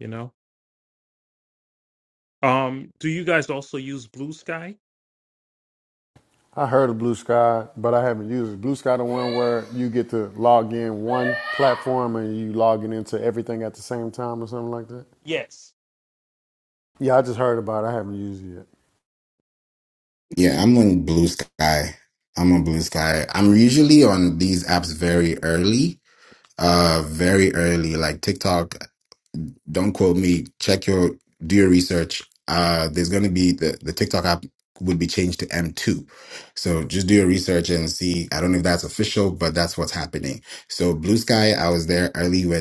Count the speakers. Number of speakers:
3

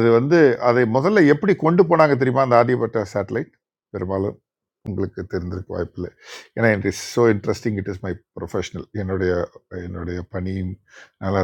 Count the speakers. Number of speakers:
1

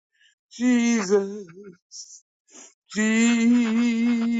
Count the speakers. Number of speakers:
1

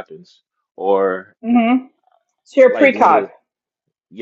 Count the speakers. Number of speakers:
2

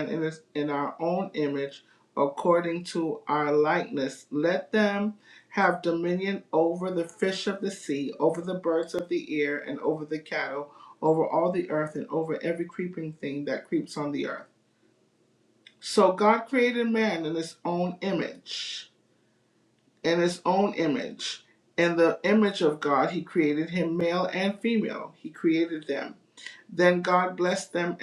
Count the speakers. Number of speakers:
1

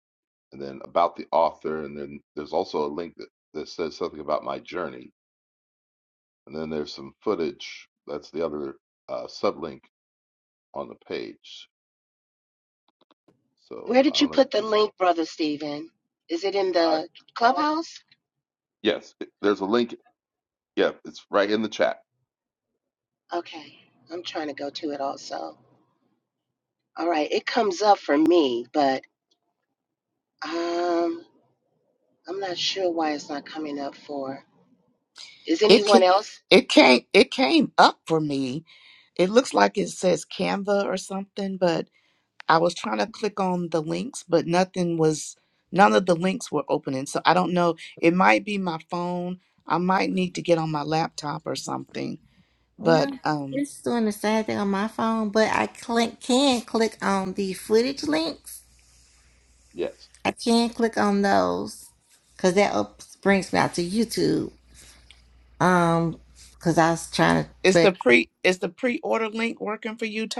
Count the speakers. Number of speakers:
4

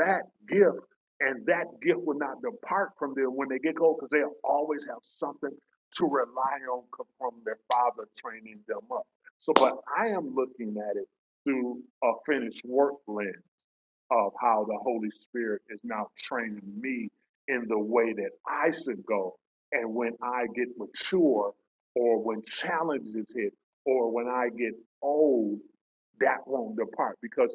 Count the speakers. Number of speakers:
1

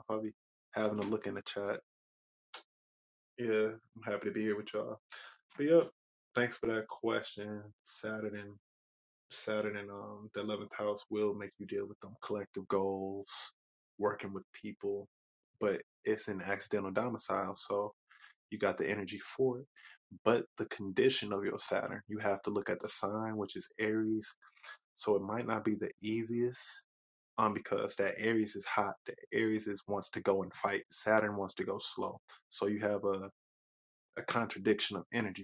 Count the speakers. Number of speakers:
1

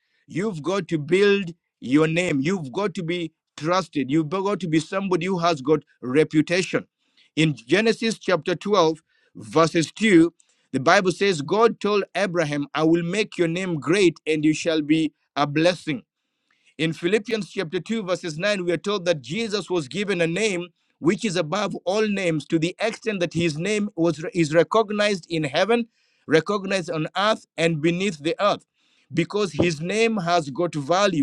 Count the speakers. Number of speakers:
1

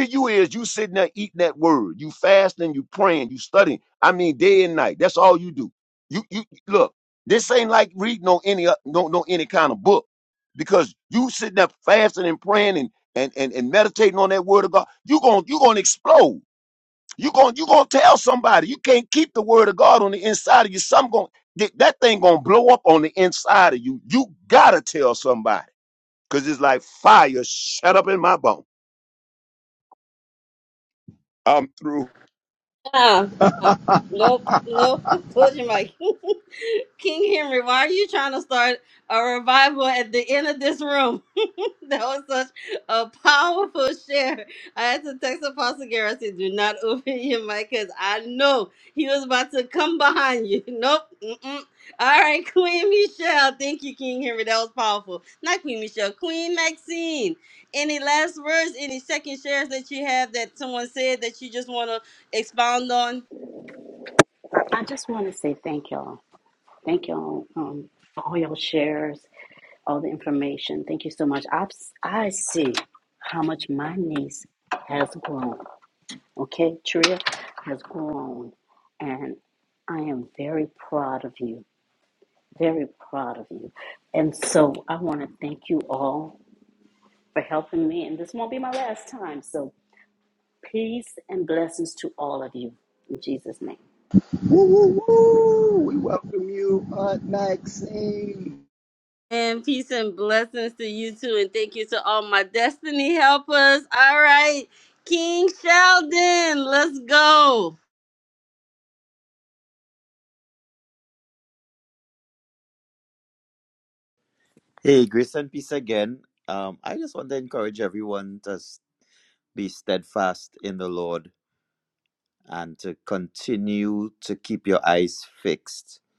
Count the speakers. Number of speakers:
5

